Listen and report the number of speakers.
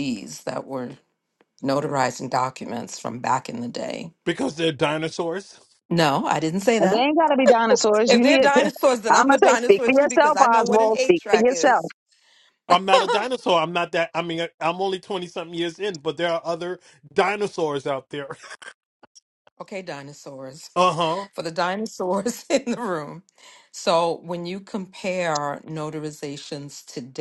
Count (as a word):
three